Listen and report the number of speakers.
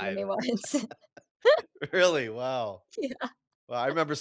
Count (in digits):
2